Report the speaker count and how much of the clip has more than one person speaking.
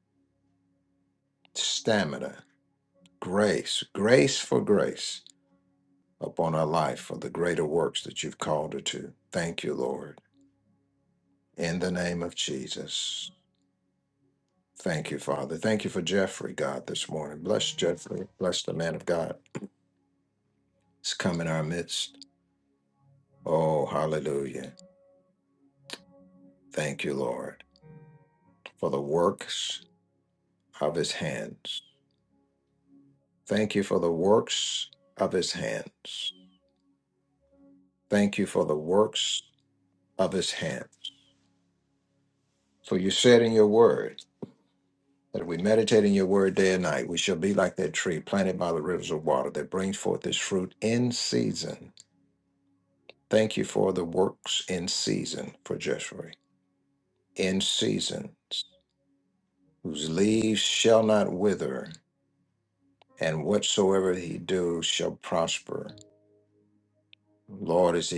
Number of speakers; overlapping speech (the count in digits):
1, no overlap